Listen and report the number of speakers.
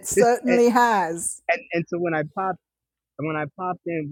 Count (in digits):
2